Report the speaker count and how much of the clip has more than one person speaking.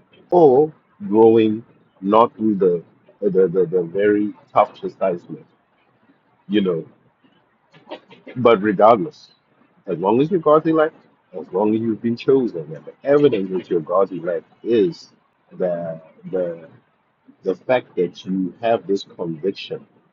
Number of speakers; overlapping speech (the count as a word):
one, no overlap